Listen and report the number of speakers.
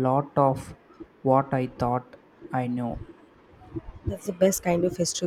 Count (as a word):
two